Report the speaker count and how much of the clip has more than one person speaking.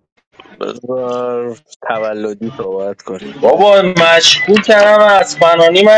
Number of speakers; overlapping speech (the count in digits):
2, no overlap